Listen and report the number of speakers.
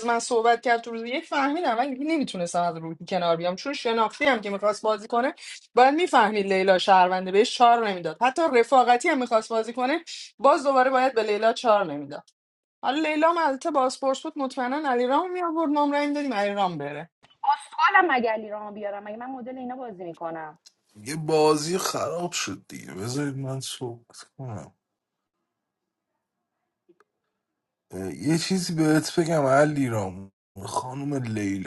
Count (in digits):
3